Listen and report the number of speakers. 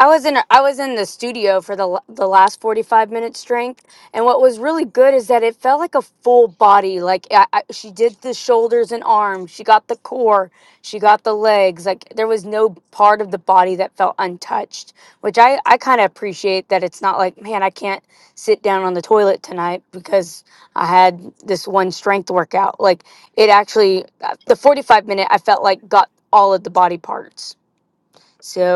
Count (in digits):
1